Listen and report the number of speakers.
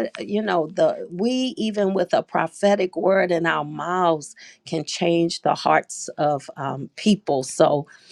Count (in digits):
1